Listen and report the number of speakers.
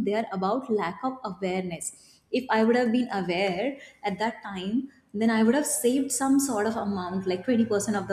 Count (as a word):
one